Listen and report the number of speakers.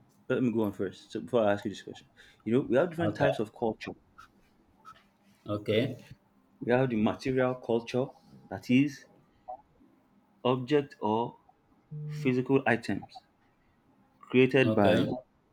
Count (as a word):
two